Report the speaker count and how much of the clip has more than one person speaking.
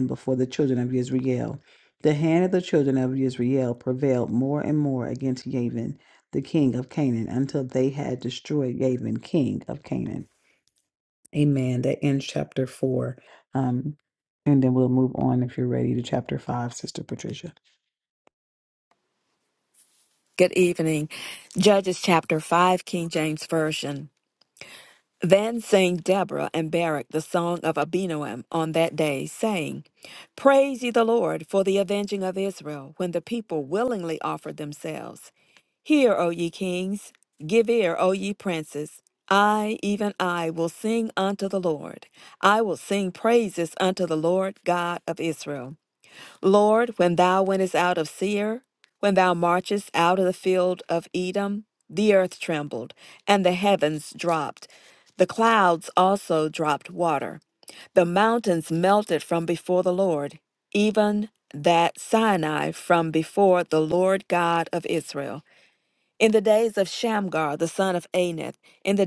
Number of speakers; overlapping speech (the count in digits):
2, no overlap